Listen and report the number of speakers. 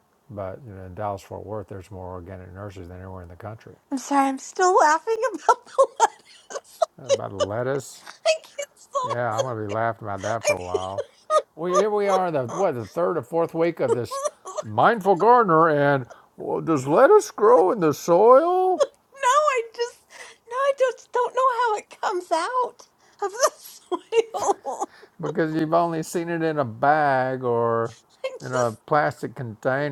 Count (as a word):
two